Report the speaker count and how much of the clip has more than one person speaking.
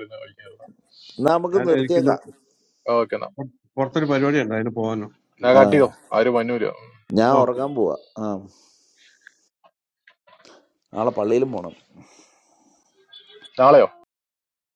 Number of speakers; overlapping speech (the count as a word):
three, about 7%